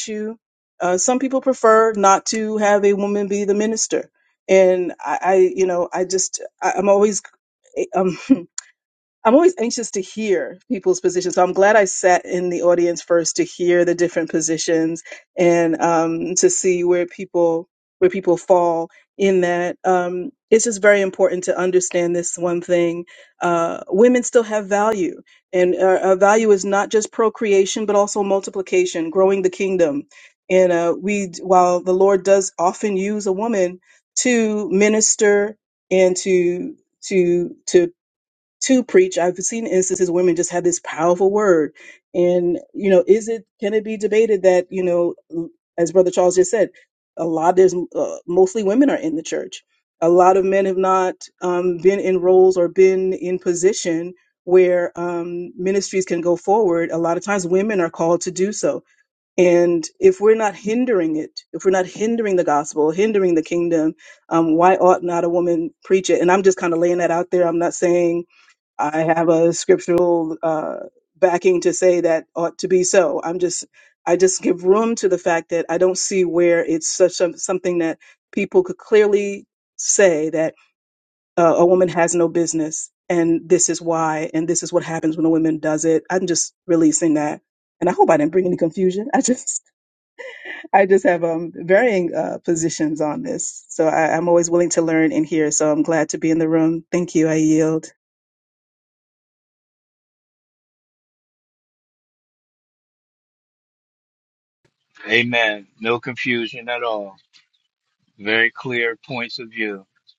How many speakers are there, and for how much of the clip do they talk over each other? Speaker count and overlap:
two, no overlap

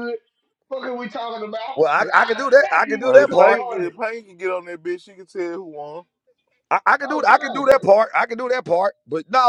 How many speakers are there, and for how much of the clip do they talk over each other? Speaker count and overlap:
three, about 32%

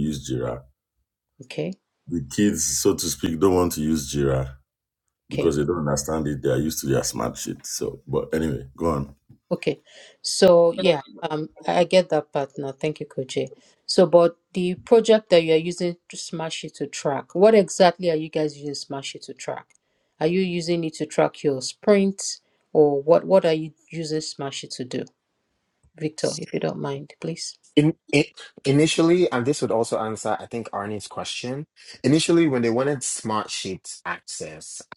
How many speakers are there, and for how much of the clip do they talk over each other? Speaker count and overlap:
three, under 1%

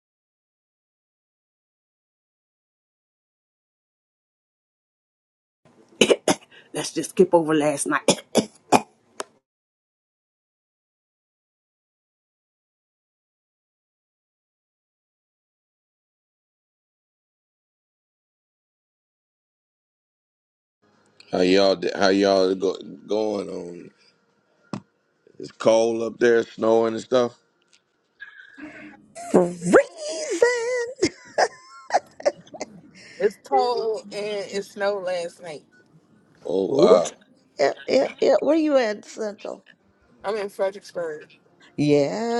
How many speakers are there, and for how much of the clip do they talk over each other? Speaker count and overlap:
four, about 1%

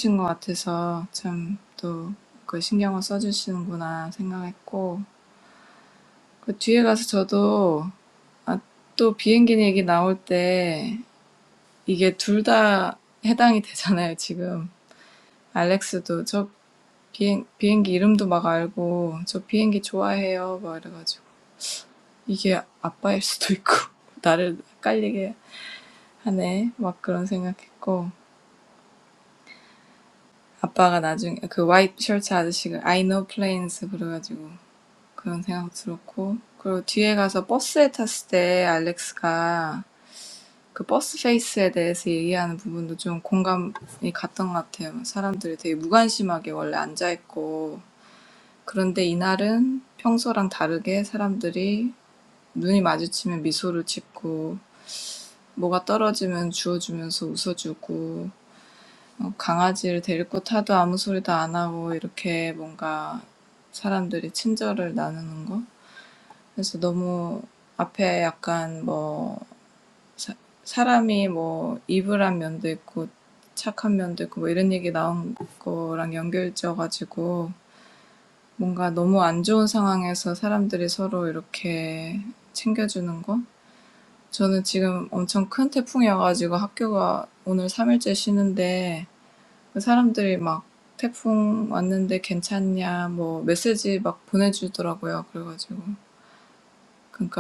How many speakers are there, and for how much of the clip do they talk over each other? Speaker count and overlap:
one, no overlap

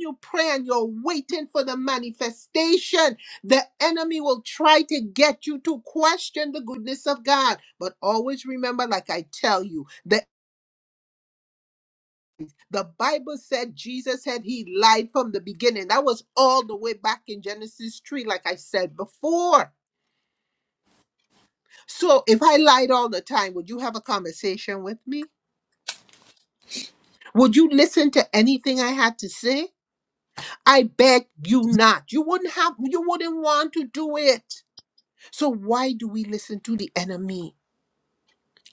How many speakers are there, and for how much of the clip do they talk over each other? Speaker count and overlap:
one, no overlap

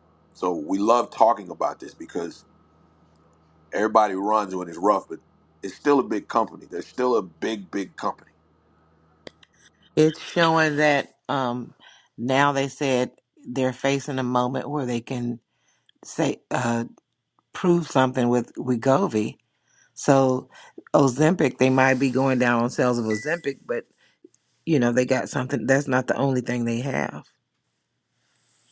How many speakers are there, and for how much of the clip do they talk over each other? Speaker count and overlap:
two, no overlap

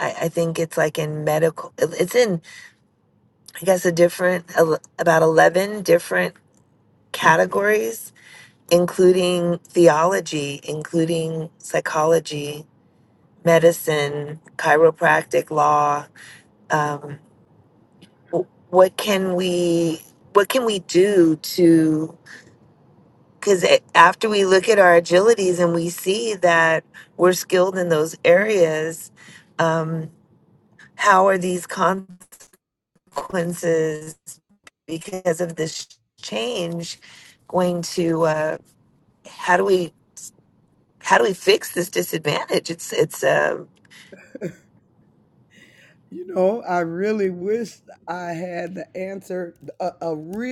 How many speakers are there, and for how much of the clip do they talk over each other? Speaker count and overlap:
two, no overlap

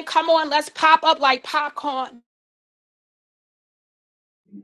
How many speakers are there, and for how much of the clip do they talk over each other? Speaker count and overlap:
one, no overlap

